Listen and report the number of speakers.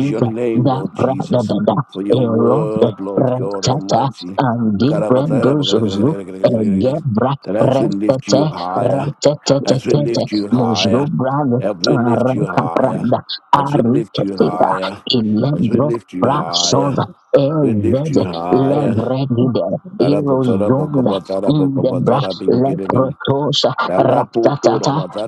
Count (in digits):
2